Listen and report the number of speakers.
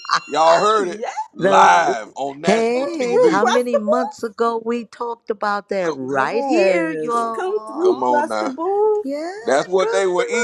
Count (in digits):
3